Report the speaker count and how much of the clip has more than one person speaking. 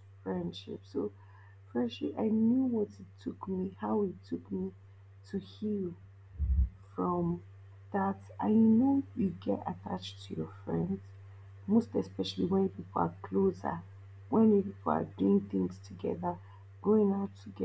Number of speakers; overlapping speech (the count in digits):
1, no overlap